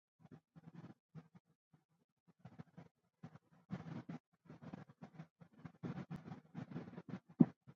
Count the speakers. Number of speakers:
0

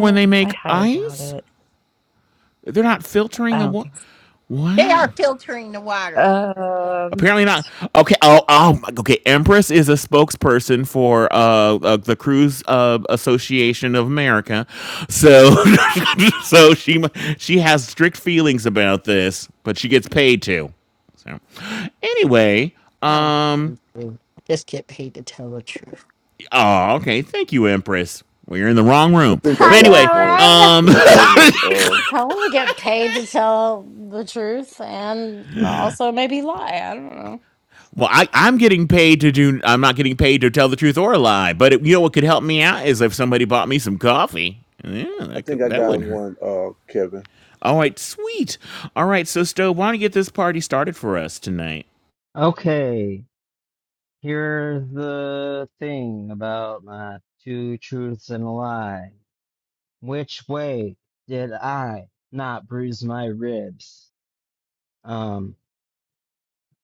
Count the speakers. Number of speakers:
6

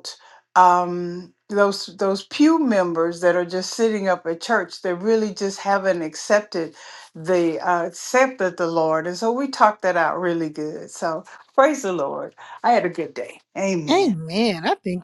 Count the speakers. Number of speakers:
2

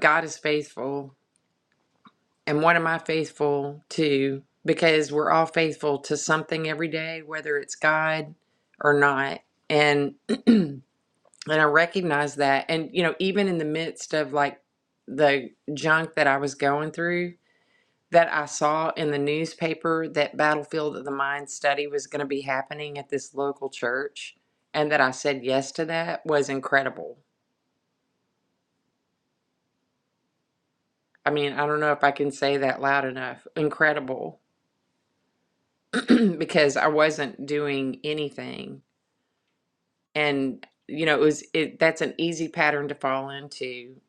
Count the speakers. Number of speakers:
1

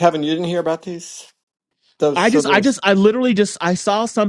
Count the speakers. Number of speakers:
2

